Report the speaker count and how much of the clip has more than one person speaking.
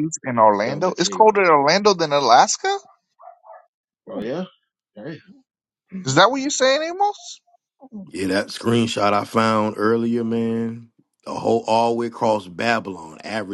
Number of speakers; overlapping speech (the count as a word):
three, about 5%